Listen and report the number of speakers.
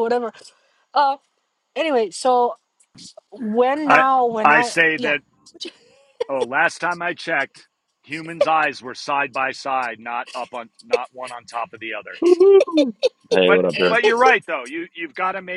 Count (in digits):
3